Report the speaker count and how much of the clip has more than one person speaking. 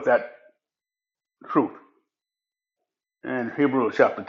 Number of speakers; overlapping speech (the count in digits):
1, no overlap